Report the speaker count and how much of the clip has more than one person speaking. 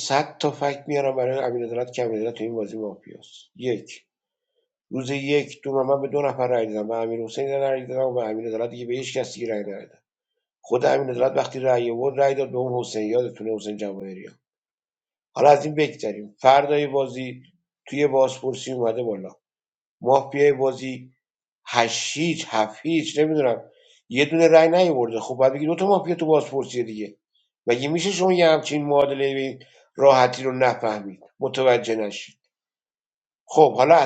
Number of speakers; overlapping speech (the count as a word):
one, no overlap